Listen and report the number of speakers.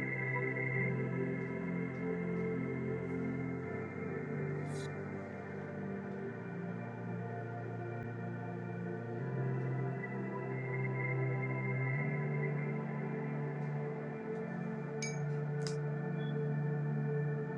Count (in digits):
0